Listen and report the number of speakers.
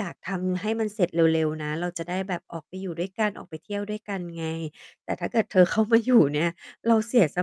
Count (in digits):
1